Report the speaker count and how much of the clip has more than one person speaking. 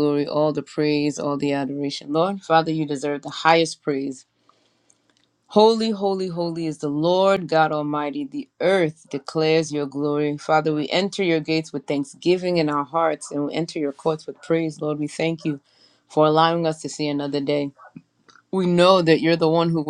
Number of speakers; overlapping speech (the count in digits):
1, no overlap